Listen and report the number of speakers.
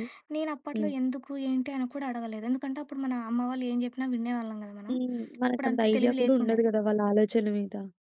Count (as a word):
two